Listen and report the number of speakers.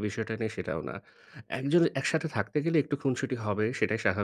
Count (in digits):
1